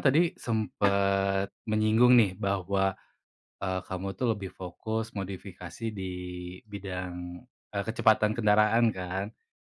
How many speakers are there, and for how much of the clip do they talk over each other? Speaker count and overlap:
one, no overlap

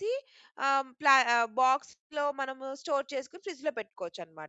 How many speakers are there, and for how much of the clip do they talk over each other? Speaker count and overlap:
one, no overlap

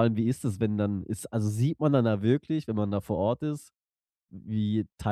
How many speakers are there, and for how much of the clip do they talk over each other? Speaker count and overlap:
one, no overlap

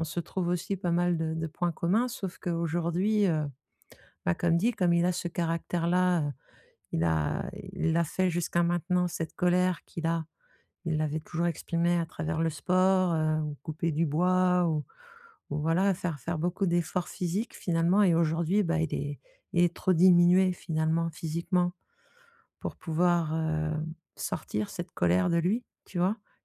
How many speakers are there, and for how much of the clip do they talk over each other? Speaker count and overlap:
one, no overlap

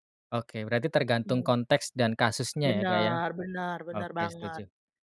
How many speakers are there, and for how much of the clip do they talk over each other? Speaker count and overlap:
two, about 28%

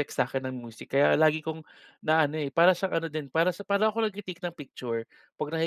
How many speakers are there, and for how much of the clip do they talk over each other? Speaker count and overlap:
one, no overlap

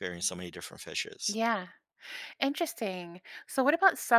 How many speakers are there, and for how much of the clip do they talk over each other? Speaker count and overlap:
two, about 1%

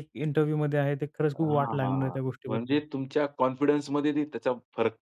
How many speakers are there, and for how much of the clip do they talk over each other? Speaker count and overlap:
two, about 28%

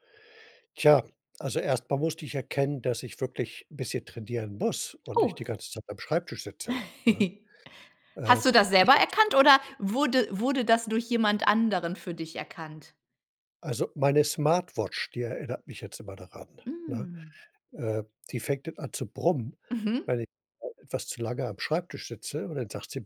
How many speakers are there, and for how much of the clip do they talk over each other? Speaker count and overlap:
two, about 5%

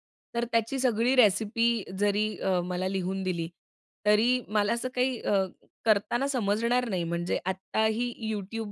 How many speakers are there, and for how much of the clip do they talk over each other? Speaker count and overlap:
one, no overlap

